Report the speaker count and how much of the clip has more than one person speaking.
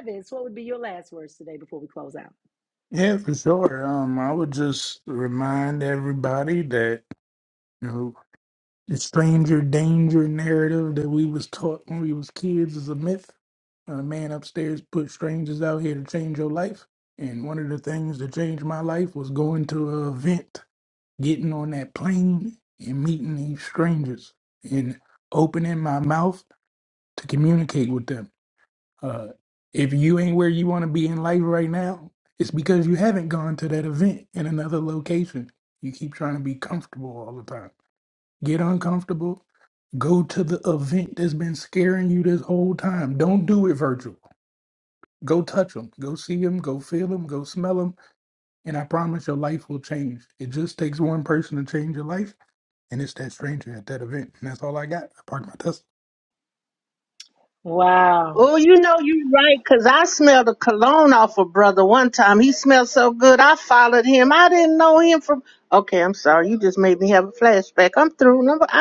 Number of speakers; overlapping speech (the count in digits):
3, under 1%